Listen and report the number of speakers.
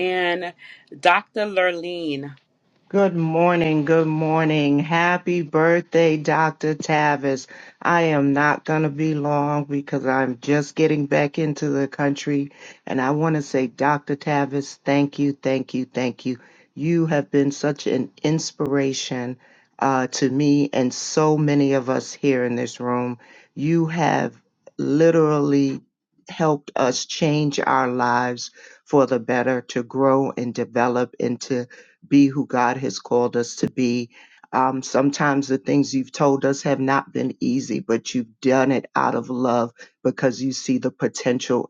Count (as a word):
two